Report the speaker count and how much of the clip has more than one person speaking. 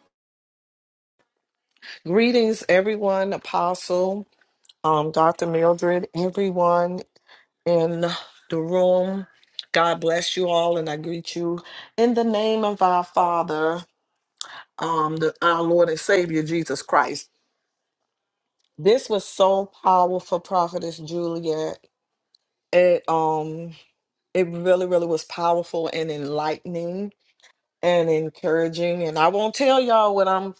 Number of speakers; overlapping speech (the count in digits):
1, no overlap